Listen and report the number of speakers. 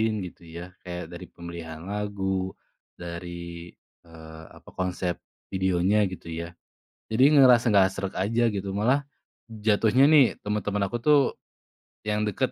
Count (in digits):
1